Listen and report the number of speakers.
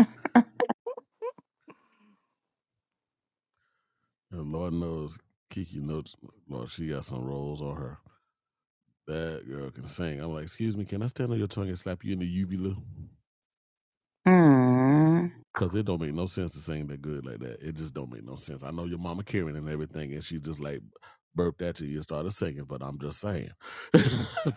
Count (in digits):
2